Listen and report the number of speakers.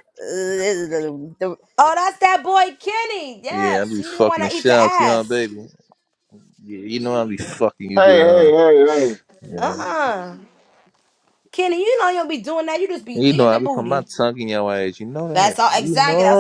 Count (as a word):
four